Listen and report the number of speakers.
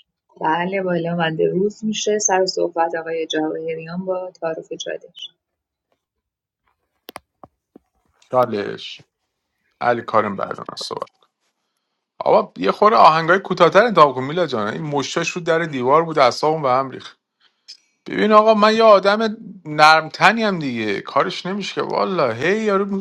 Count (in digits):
2